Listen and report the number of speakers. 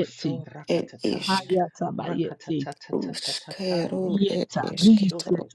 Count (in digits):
3